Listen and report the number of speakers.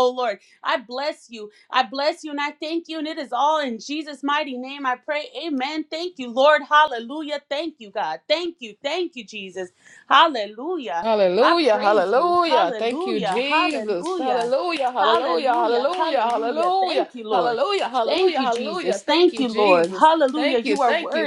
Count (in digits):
2